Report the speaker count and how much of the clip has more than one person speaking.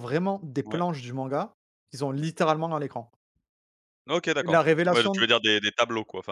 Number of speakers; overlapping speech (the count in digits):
2, about 16%